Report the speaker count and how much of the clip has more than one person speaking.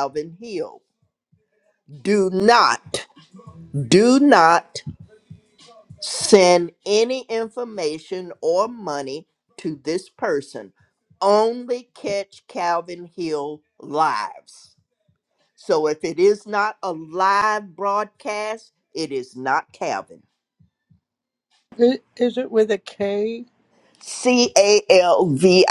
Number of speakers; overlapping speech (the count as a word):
two, no overlap